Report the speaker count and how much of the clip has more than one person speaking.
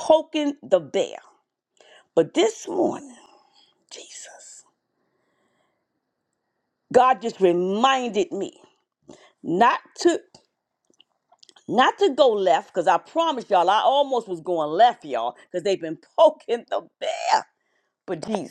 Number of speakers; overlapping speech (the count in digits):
1, no overlap